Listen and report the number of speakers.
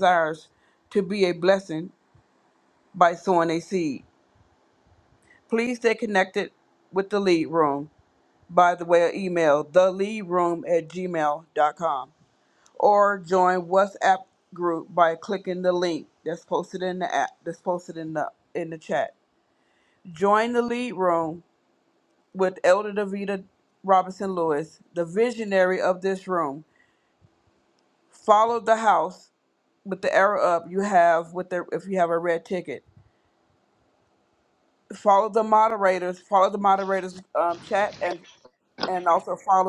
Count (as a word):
one